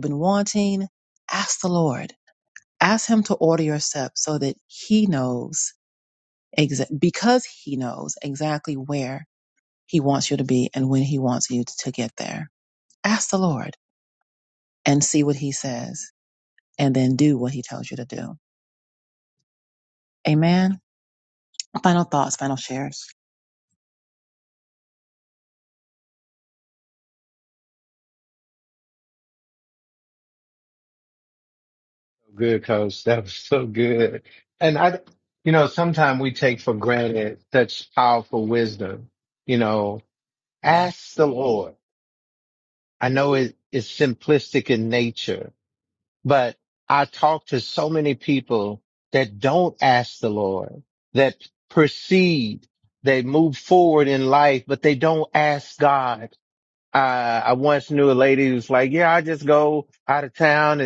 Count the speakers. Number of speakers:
2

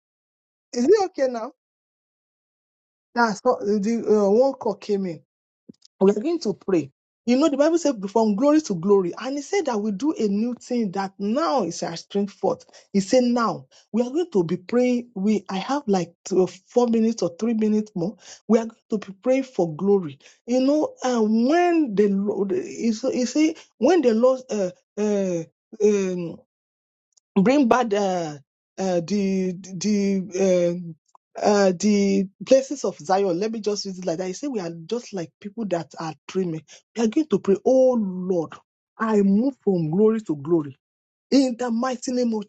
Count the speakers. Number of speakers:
1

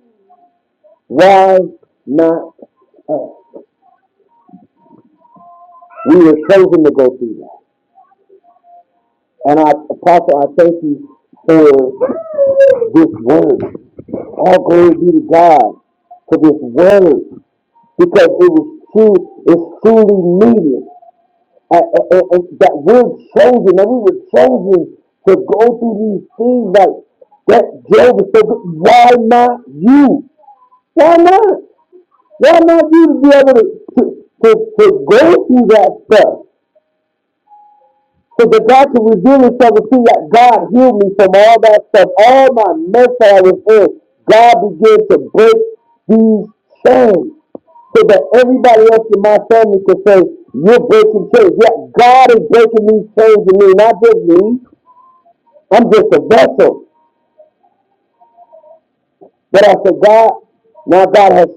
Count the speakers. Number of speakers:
1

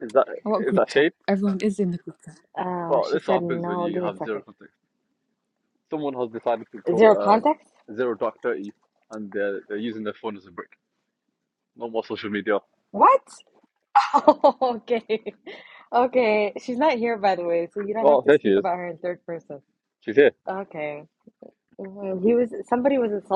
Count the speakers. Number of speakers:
3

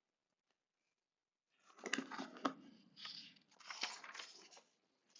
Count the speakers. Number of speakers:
0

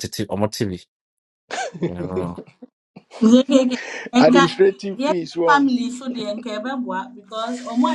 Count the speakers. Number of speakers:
3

